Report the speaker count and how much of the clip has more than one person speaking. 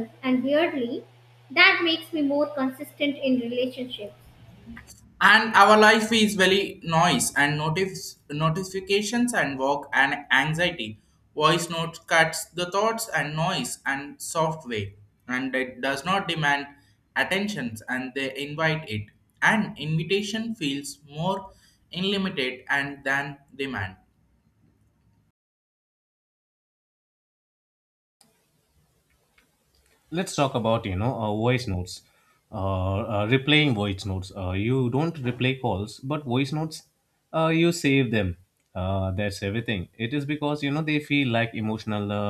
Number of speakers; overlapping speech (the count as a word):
three, no overlap